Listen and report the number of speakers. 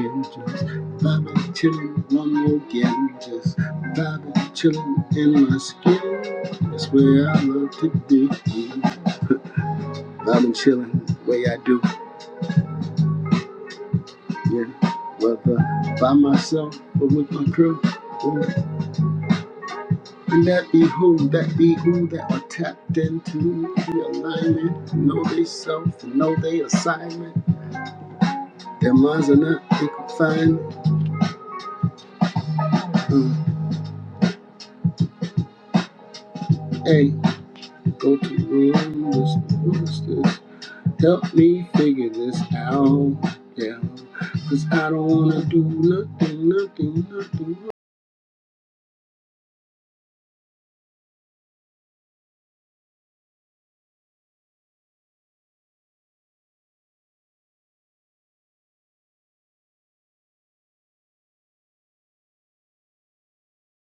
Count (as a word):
one